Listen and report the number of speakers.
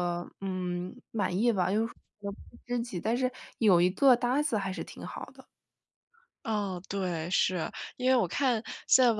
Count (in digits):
2